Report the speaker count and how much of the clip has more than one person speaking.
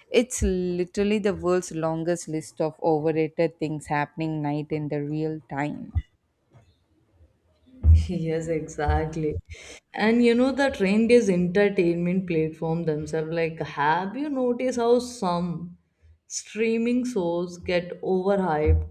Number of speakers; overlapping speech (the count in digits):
2, no overlap